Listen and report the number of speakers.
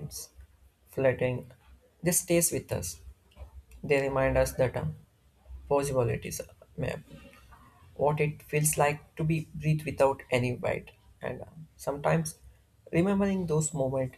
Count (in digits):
1